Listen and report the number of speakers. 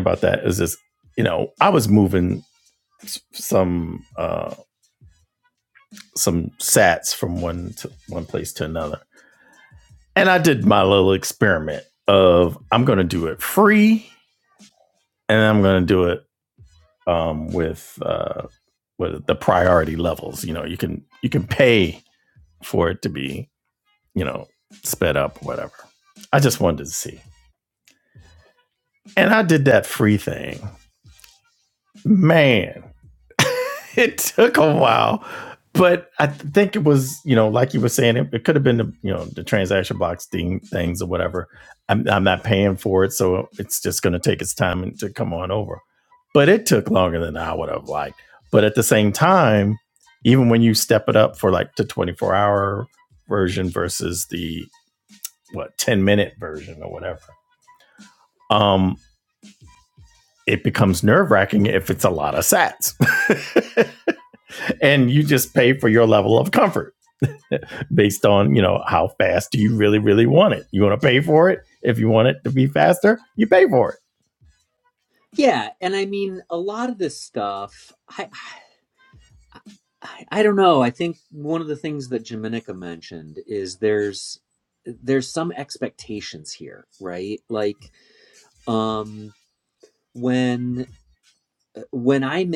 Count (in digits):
2